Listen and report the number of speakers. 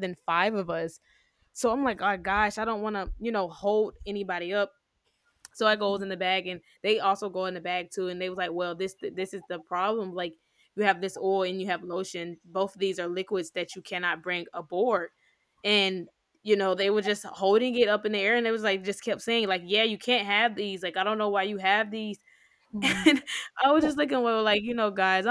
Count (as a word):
one